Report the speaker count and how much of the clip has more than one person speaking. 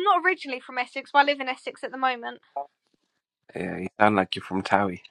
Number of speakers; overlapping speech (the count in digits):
2, no overlap